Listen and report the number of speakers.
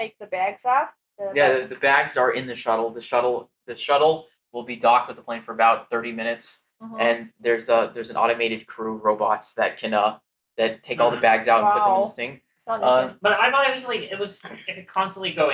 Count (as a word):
three